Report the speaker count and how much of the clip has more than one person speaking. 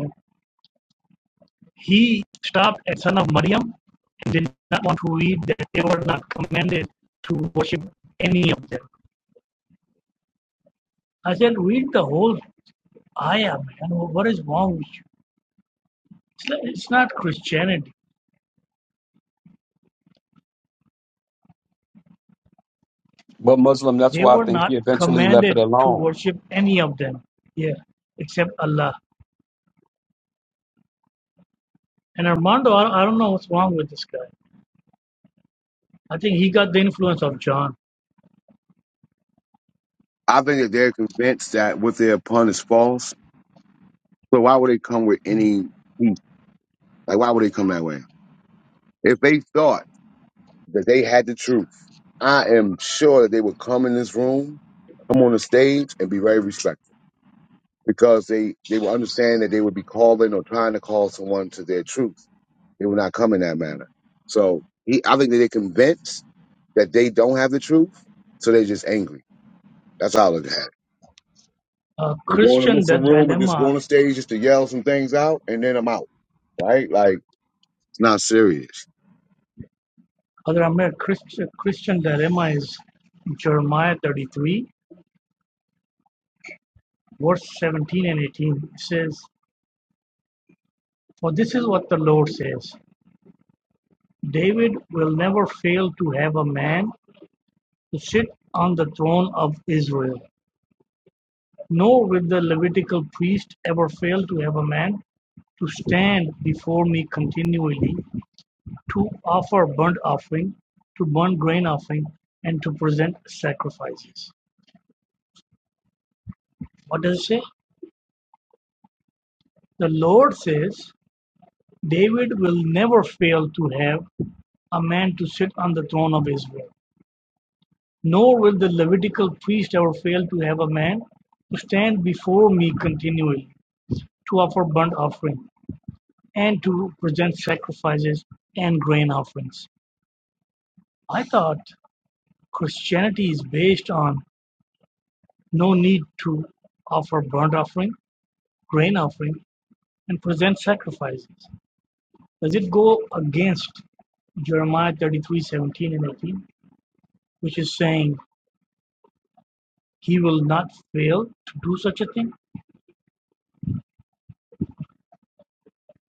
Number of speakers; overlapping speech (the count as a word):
three, about 2%